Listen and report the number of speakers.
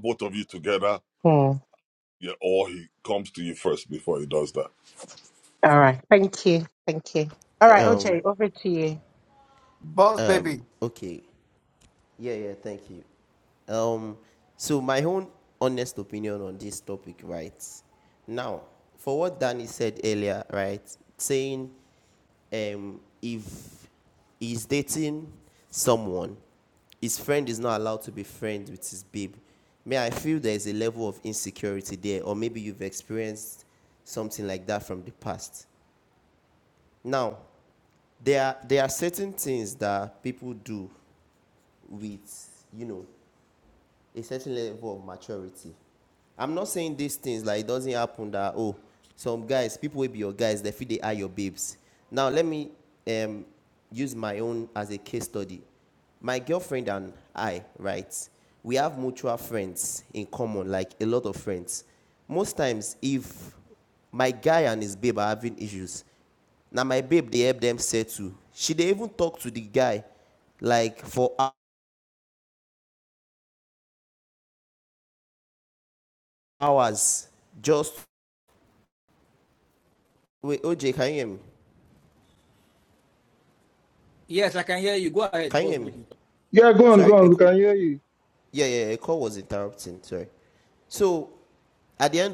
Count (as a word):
five